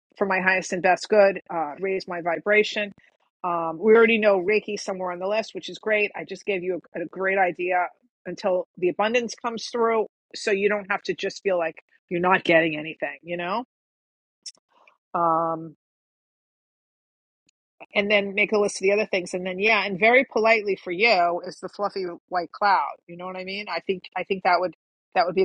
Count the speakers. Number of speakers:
one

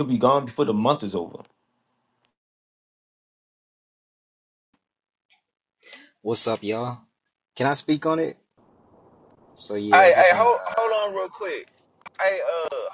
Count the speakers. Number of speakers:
three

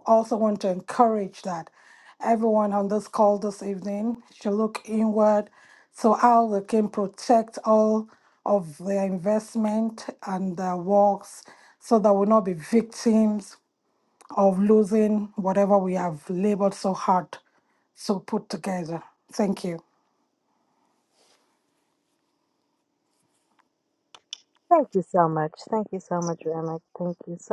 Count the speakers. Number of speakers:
two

